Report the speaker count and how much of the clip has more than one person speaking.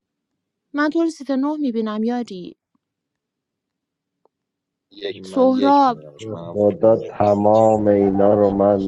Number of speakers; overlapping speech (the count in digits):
3, about 14%